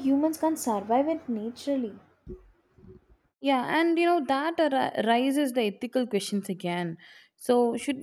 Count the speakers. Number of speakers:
2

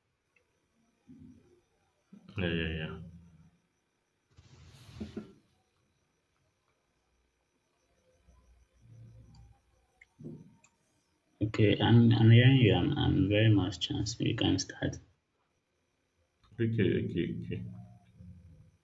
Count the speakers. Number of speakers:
2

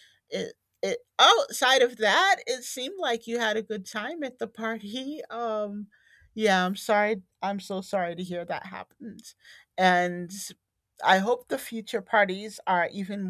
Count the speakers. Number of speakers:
1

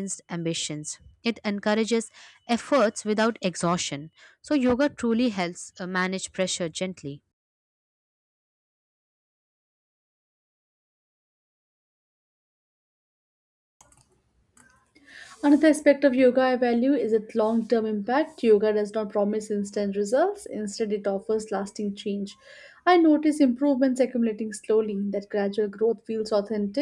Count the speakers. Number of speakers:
2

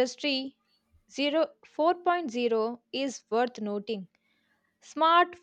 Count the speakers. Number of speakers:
1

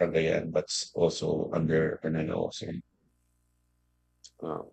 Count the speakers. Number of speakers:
1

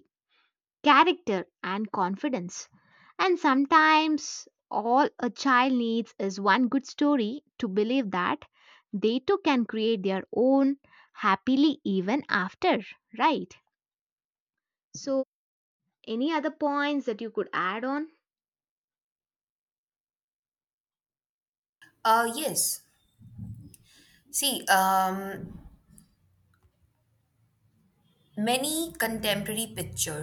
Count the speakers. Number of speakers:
2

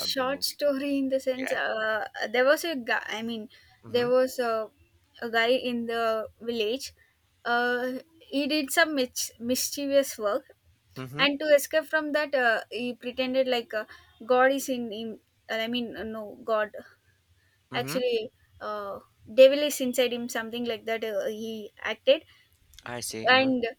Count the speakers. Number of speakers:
2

